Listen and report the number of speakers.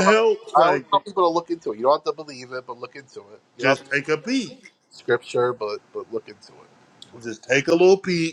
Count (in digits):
2